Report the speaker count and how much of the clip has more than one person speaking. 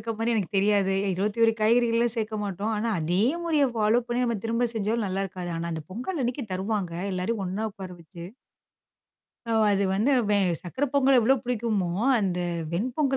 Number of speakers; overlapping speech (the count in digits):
1, no overlap